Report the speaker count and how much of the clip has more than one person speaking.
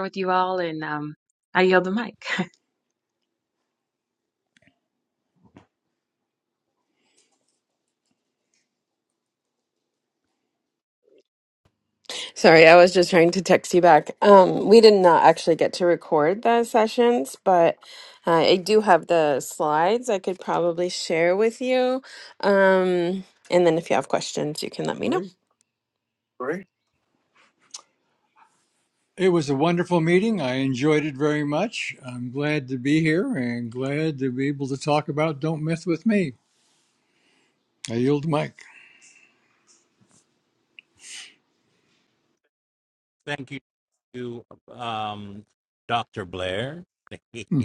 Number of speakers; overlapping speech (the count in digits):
4, under 1%